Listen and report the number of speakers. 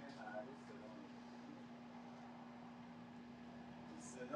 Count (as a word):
zero